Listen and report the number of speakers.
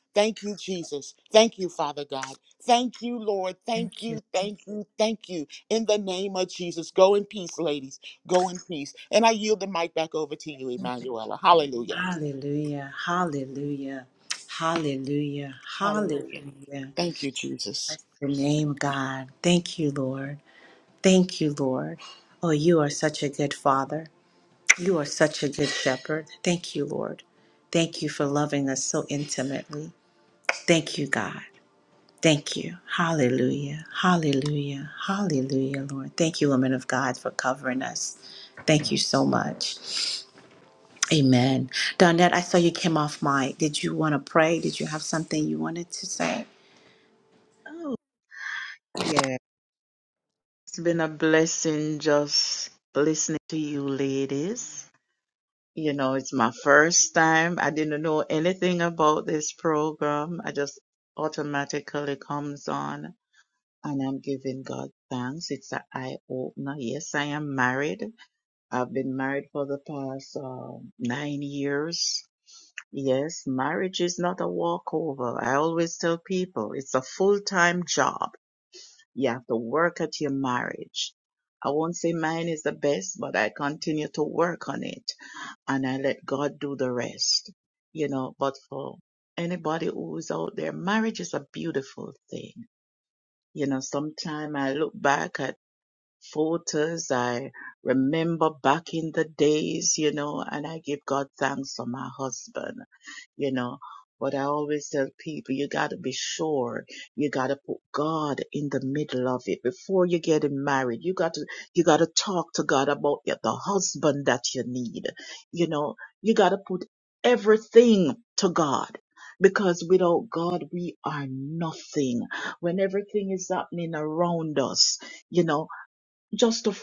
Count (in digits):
3